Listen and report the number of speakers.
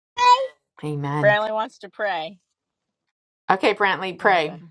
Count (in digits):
2